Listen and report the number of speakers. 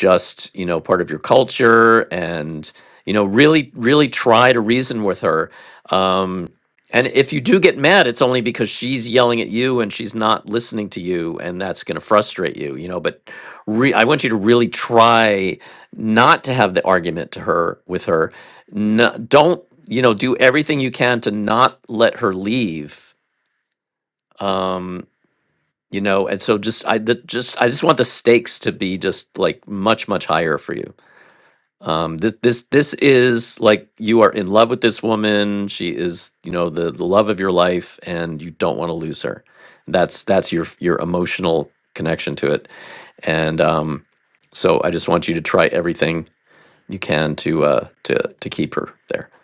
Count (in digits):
1